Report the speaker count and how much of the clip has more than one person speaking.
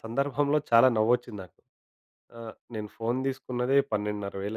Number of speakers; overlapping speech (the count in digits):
1, no overlap